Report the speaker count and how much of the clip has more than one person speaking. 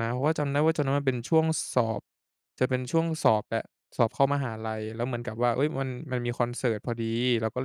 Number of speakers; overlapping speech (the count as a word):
one, no overlap